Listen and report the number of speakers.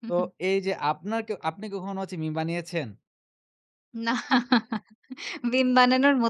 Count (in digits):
2